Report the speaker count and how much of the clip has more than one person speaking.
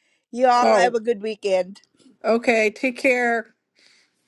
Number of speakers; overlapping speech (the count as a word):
two, about 8%